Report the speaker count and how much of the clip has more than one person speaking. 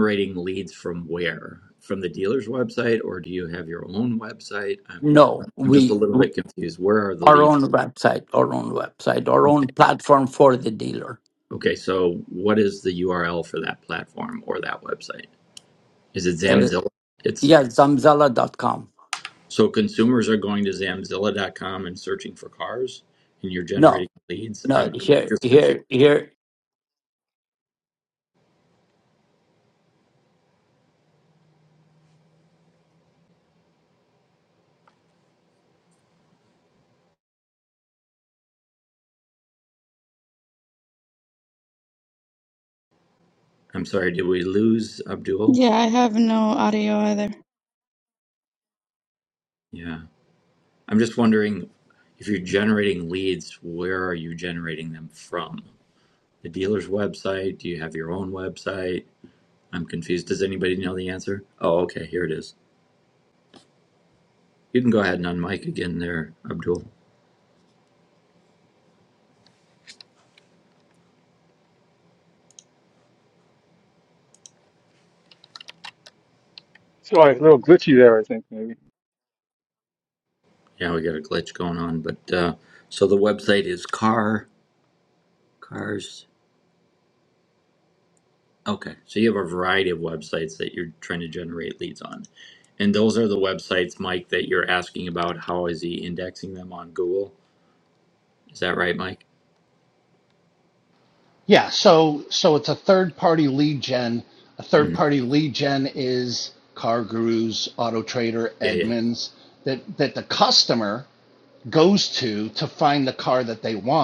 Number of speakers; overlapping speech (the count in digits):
5, about 3%